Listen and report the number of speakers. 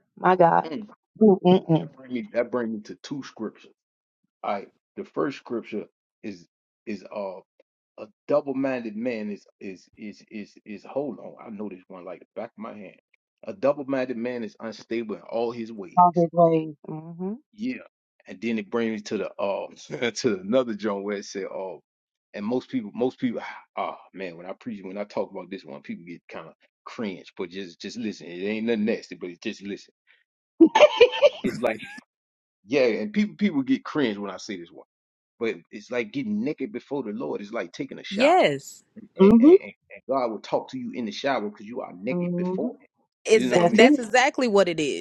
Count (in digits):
3